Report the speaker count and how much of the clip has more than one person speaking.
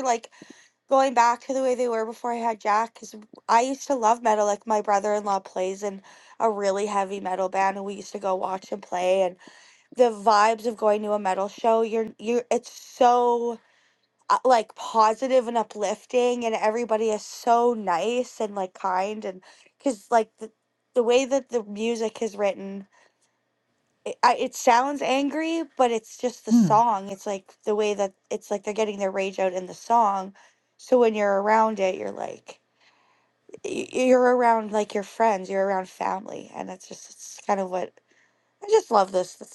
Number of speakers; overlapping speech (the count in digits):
1, no overlap